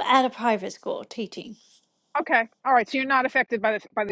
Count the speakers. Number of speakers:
2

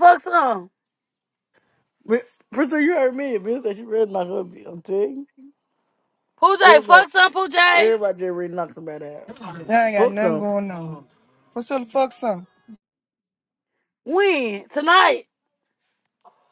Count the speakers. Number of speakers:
3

